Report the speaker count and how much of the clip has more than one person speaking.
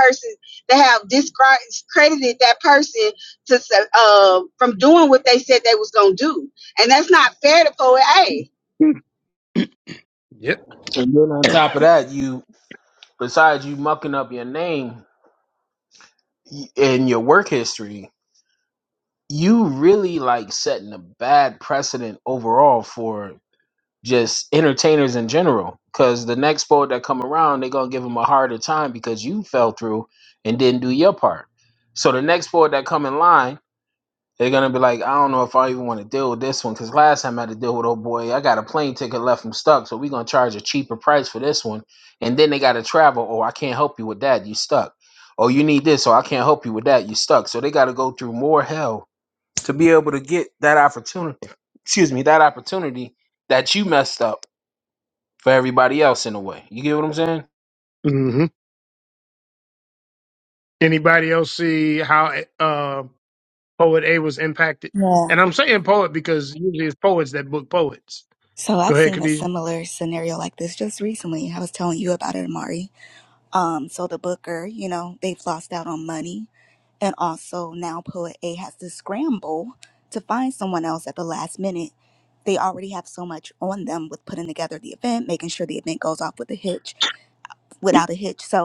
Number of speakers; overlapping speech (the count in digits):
4, about 1%